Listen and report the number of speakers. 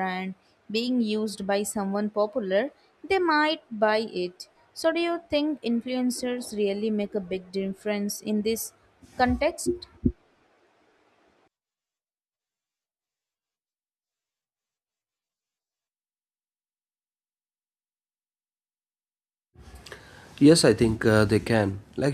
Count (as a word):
two